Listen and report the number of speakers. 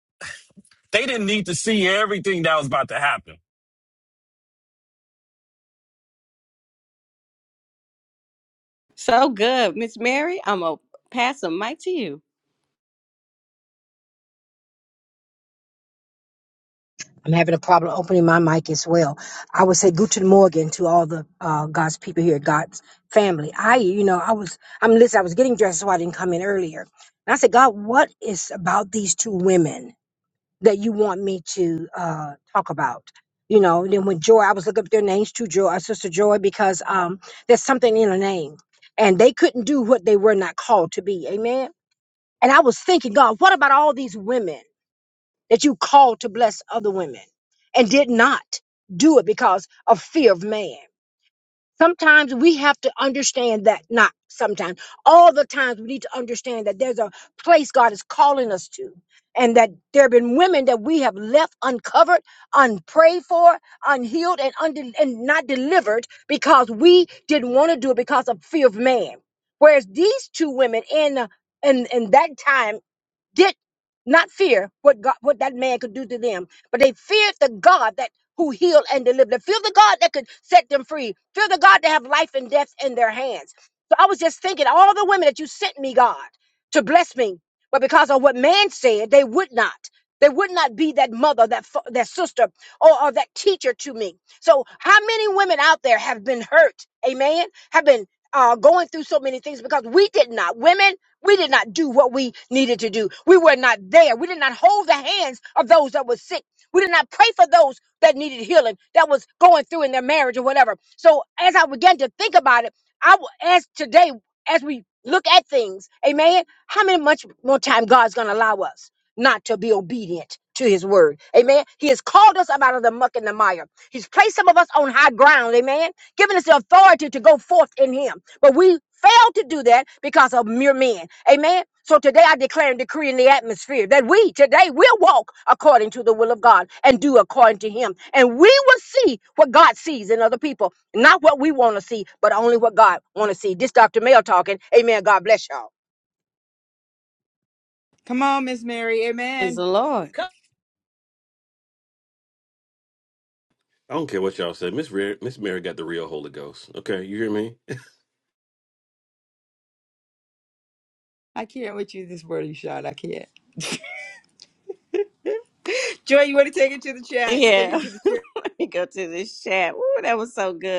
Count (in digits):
5